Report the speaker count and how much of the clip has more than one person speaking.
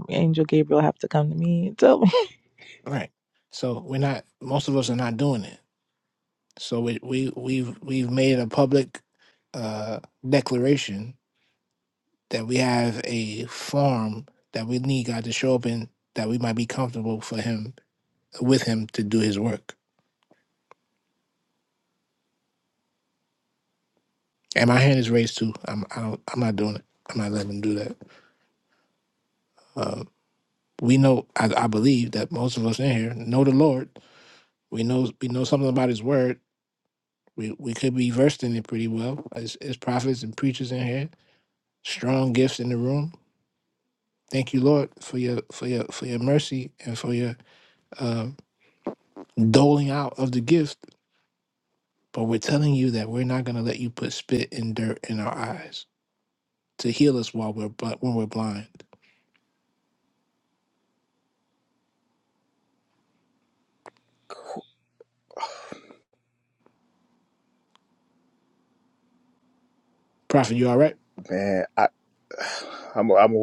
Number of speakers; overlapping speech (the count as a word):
three, no overlap